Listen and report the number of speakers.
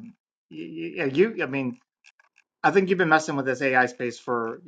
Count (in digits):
1